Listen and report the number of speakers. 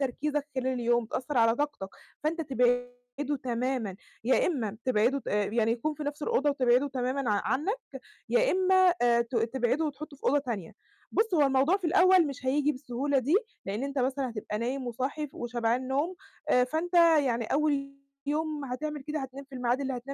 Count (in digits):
1